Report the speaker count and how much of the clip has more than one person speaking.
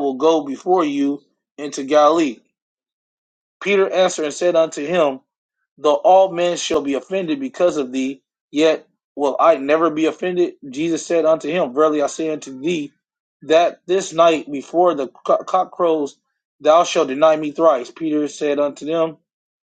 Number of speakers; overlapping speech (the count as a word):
one, no overlap